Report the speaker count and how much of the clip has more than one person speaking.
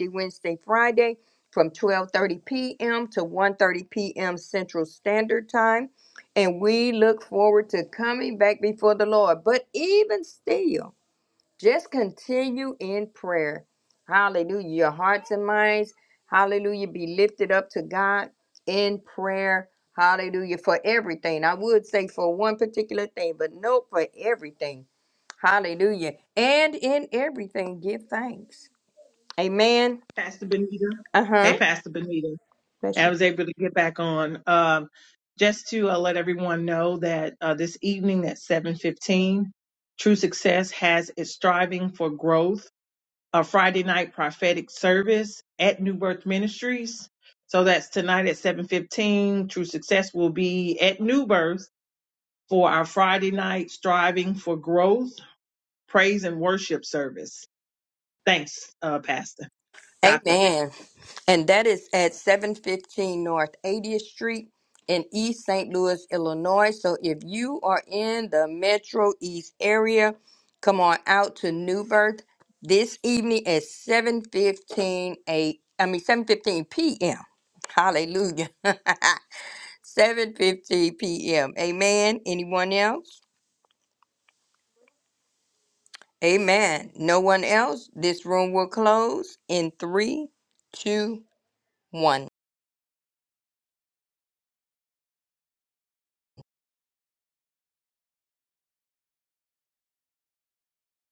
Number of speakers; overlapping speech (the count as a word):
two, about 1%